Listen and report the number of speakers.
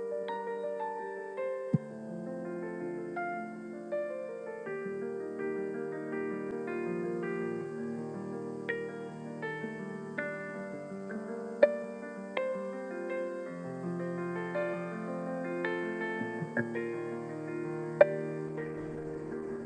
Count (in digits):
0